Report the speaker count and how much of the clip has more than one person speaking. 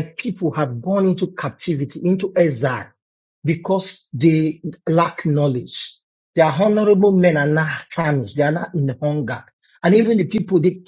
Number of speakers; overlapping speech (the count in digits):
1, no overlap